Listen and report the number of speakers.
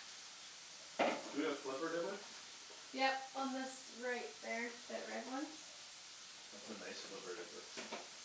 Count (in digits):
2